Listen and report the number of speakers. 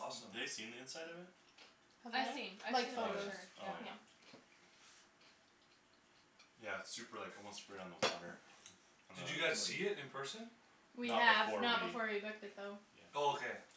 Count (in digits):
4